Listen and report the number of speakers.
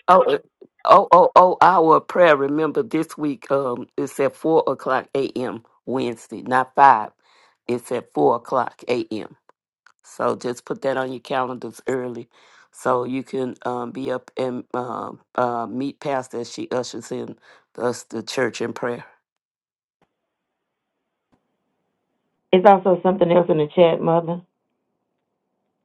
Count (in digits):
2